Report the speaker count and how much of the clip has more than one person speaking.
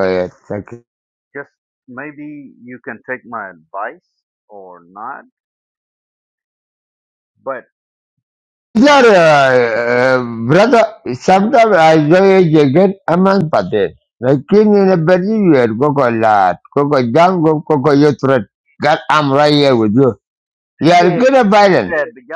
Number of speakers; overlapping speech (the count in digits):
2, about 4%